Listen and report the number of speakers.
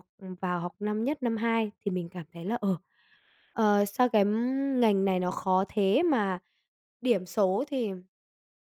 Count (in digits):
1